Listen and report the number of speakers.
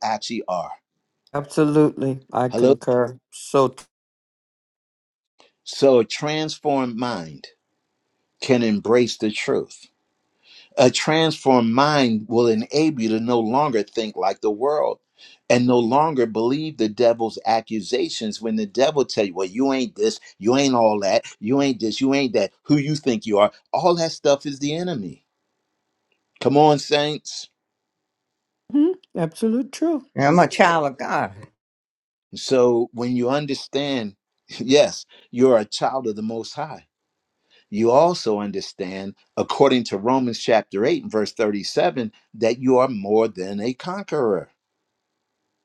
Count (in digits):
3